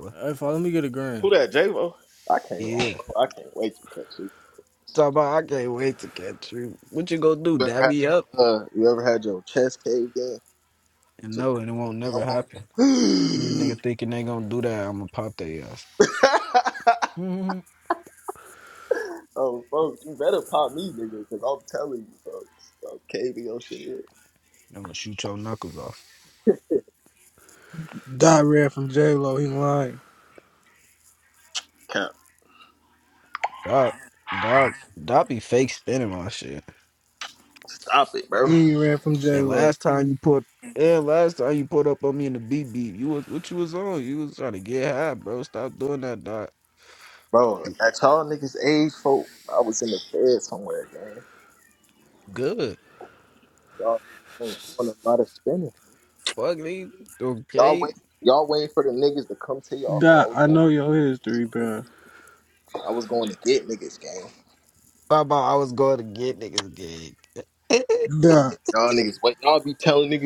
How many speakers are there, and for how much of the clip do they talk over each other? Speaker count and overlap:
4, about 4%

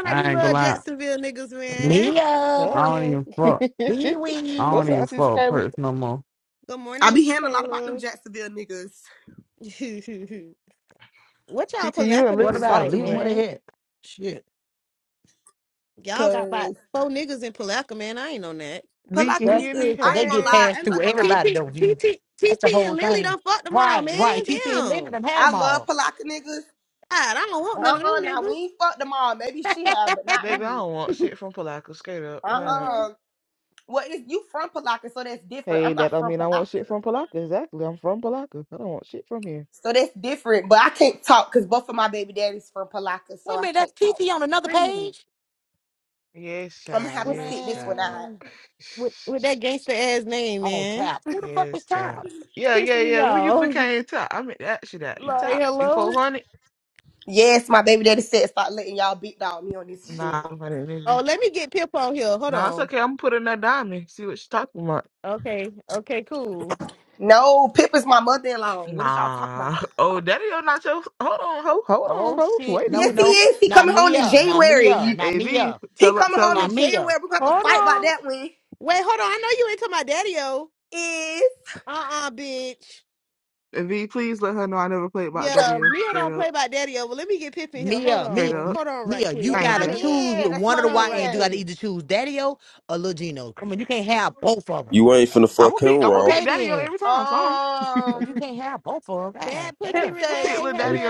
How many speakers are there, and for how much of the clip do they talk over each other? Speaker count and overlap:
6, about 36%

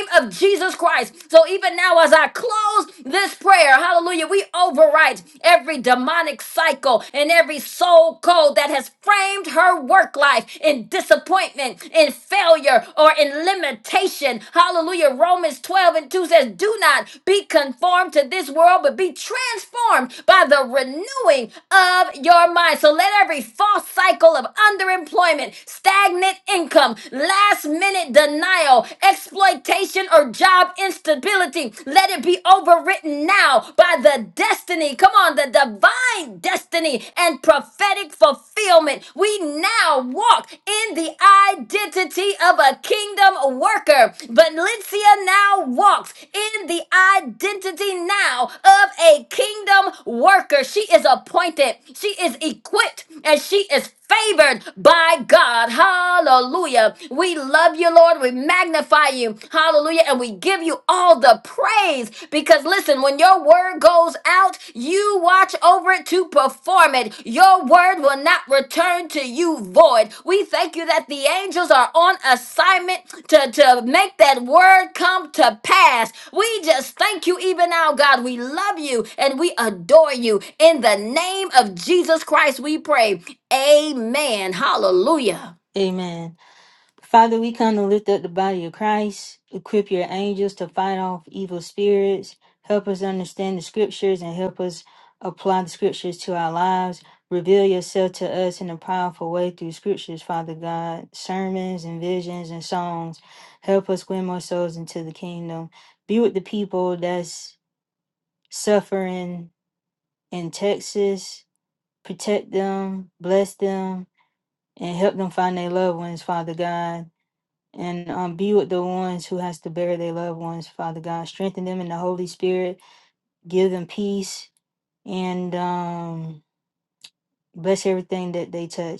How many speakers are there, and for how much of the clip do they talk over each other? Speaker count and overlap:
2, no overlap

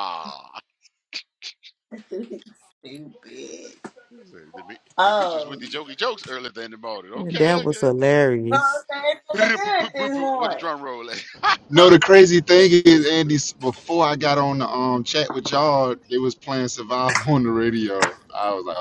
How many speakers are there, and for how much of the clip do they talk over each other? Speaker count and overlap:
4, about 11%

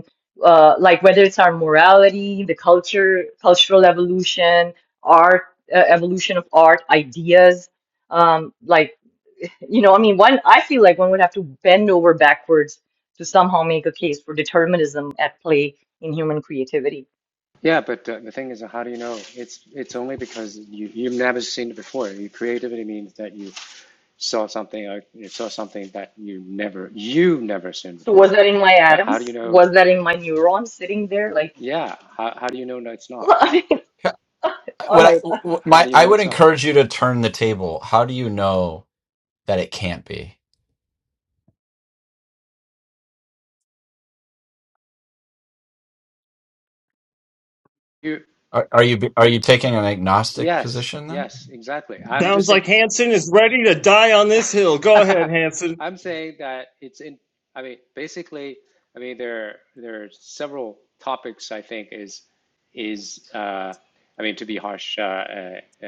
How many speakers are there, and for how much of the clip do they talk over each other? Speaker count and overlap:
4, about 5%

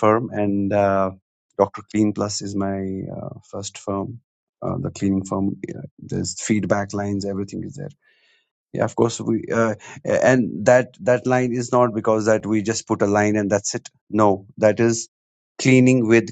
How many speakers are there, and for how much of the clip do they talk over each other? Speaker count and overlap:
1, no overlap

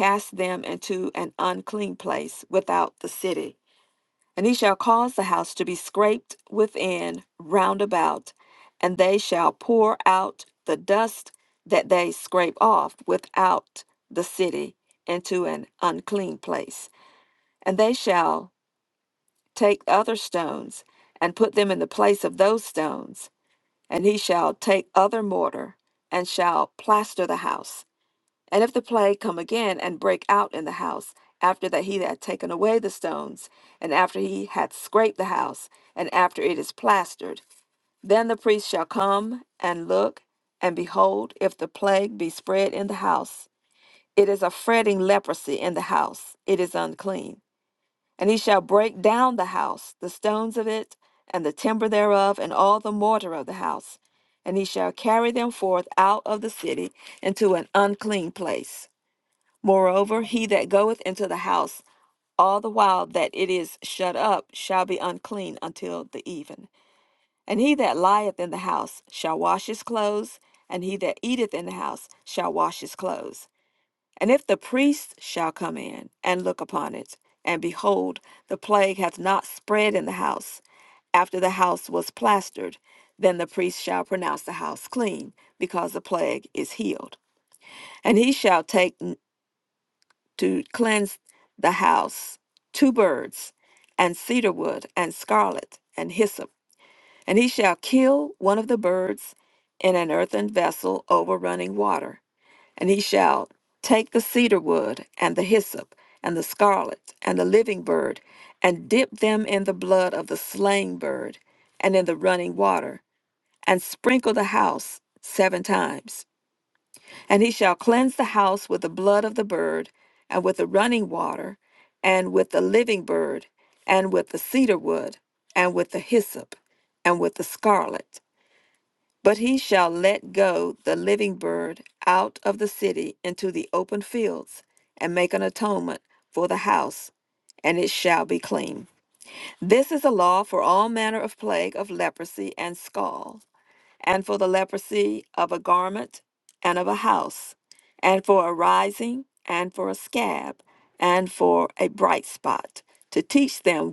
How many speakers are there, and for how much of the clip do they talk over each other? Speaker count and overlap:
1, no overlap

